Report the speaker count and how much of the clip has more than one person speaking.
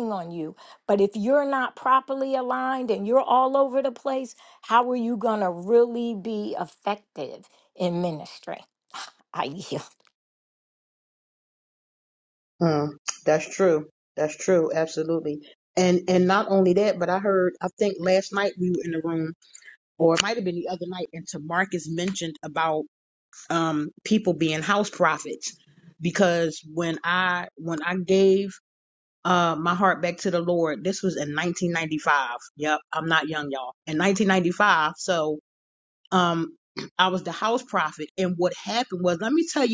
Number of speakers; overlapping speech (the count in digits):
2, no overlap